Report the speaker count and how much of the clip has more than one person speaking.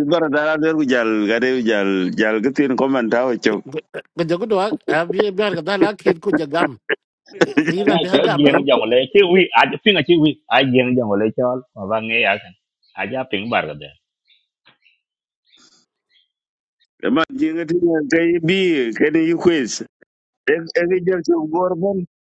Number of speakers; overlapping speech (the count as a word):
three, about 4%